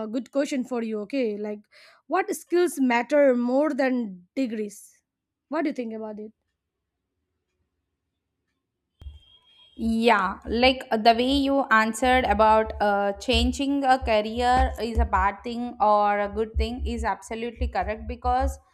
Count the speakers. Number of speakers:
2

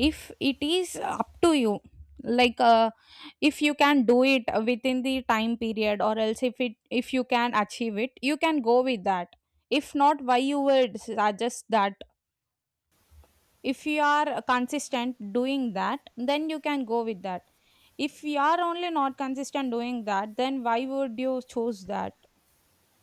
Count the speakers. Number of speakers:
1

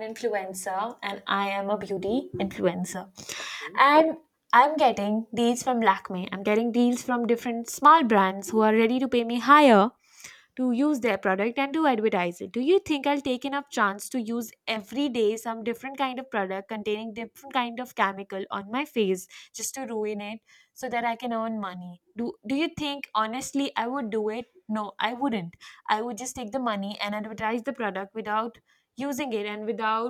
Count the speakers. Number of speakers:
1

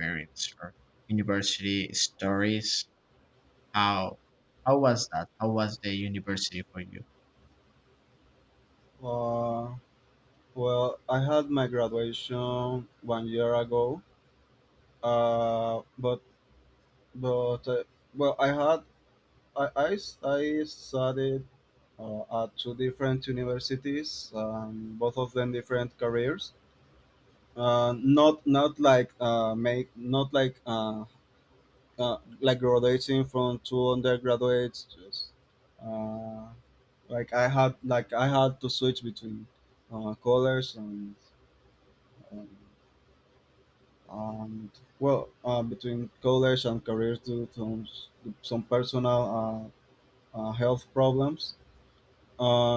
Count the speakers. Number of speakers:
2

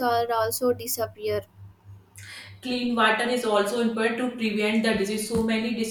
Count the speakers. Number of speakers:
2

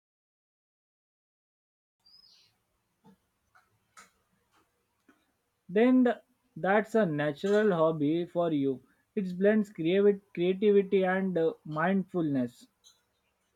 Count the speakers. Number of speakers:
1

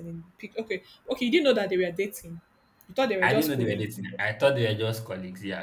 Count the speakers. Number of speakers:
2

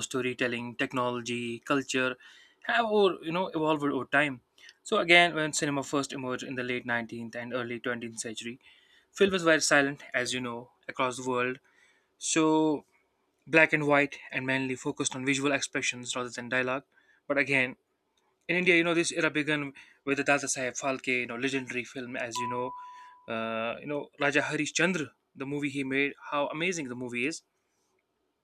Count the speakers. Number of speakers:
1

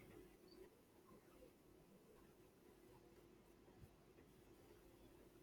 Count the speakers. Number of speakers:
0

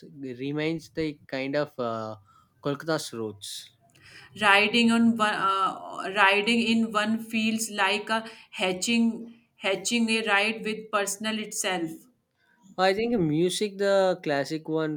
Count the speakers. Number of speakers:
2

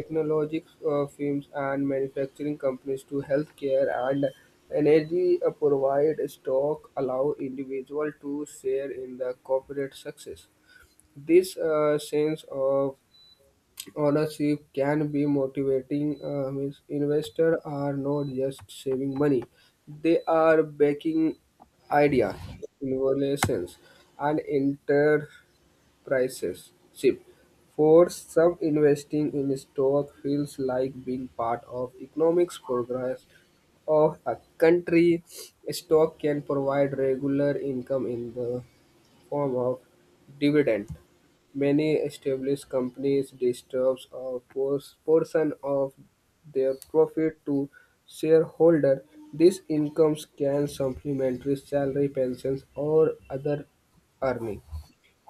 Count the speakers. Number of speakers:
1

